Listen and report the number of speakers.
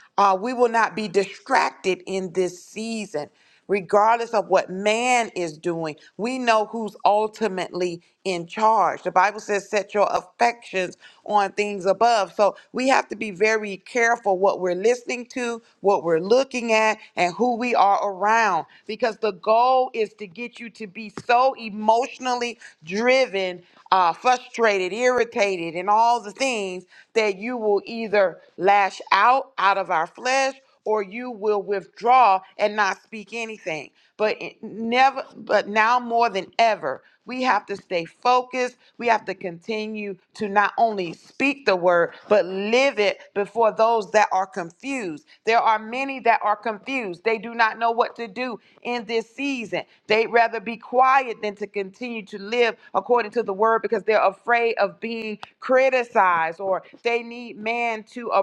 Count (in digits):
1